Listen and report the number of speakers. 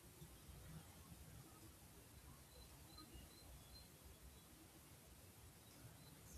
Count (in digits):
0